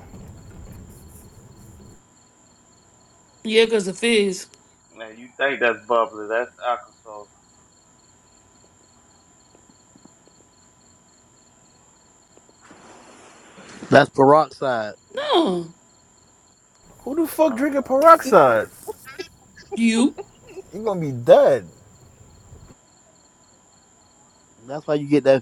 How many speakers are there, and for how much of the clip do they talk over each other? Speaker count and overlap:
4, about 4%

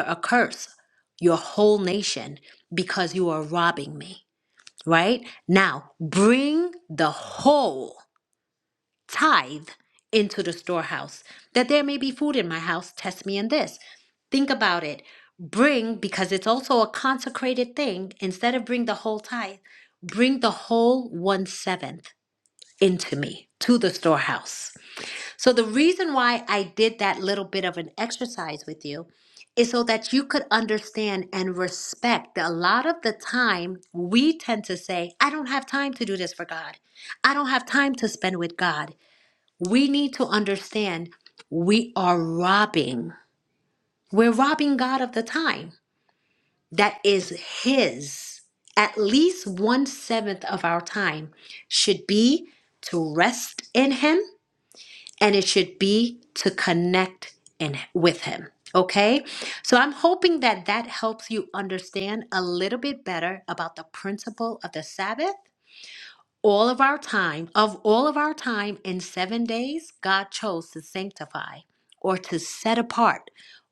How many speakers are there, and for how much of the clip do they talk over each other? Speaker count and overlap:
1, no overlap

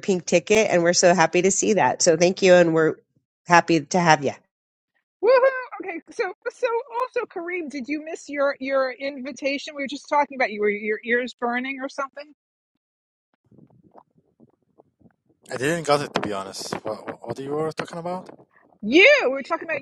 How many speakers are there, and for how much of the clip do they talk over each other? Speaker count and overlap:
3, no overlap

